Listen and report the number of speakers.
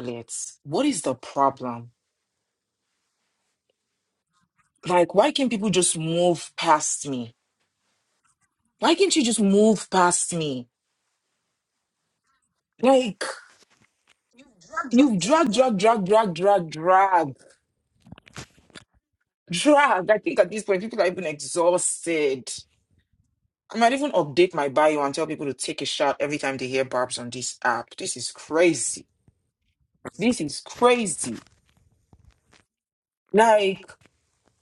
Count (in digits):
1